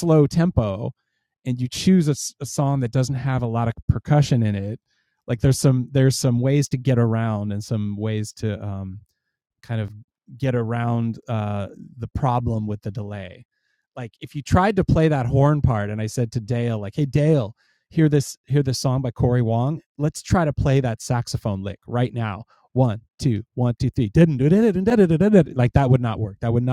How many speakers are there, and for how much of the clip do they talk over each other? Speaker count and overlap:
1, no overlap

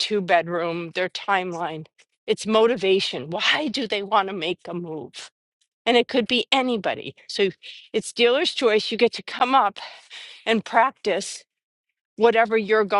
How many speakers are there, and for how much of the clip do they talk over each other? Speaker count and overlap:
1, no overlap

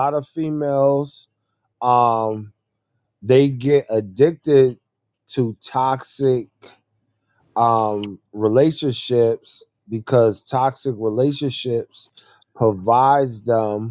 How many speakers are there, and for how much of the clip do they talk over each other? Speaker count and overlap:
1, no overlap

